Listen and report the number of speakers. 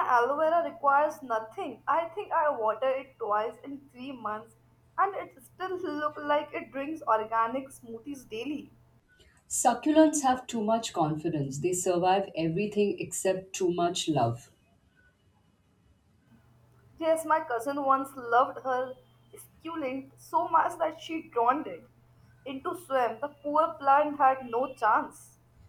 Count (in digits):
2